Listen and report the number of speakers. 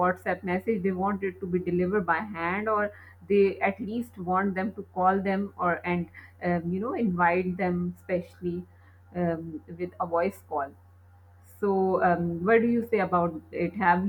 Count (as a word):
one